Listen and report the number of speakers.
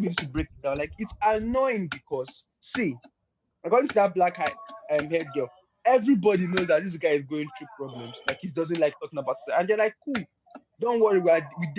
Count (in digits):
1